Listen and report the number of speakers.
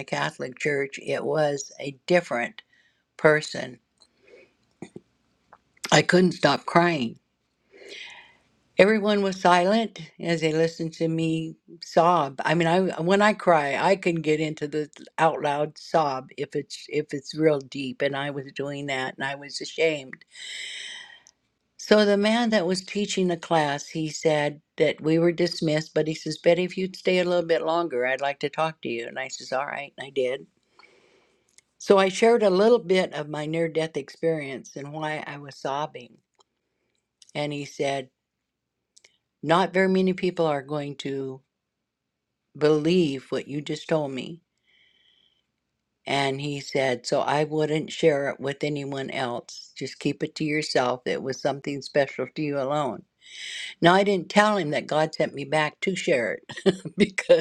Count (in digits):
1